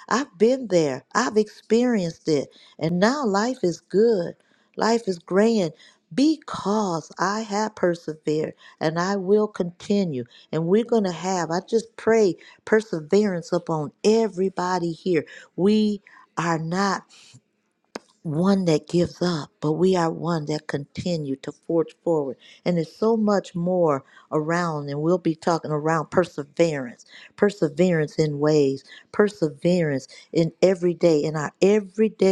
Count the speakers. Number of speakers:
one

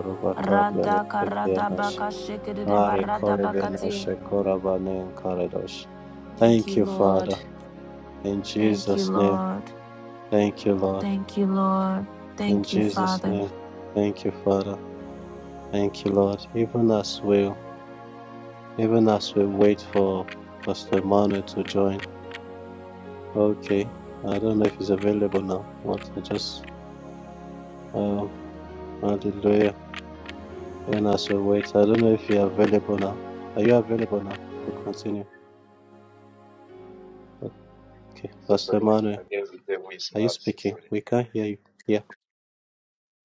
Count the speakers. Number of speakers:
three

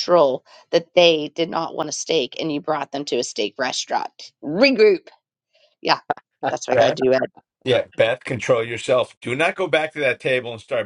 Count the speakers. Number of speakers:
two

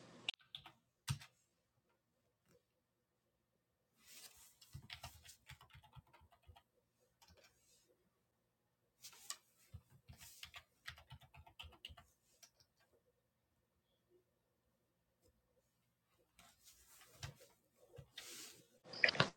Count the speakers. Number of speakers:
zero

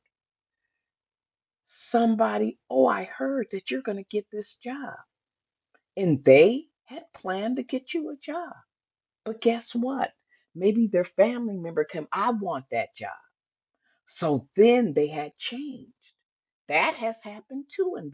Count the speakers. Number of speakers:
one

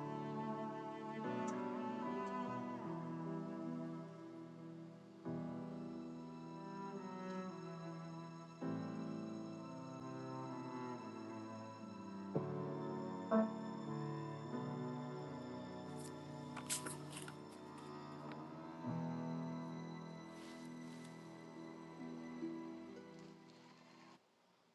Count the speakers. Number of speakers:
zero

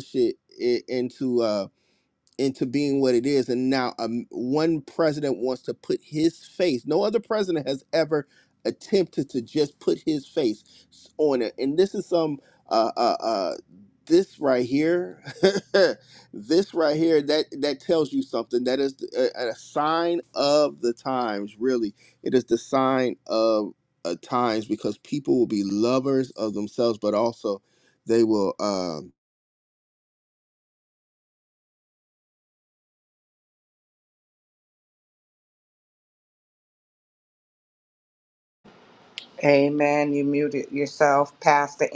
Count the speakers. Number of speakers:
two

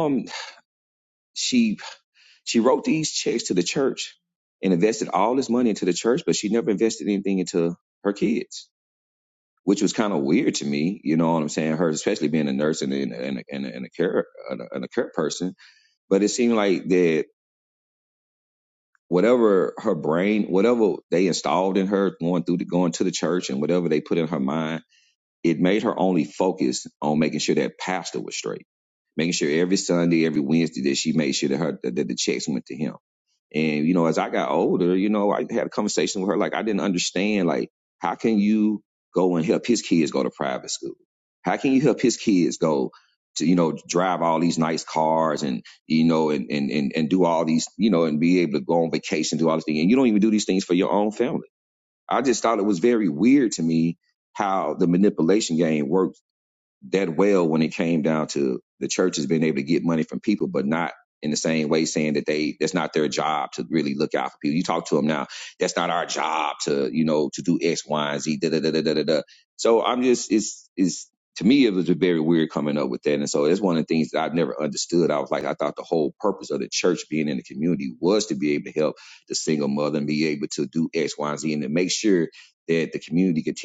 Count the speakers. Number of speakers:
one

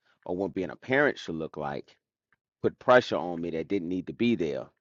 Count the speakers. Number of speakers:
one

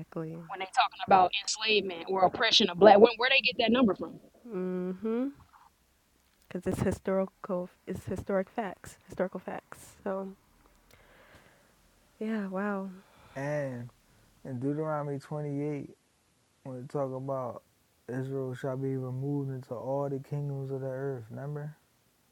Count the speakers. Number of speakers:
three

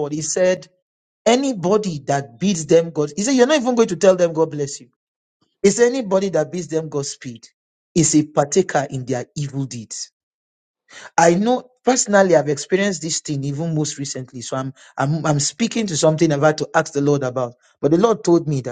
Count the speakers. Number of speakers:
one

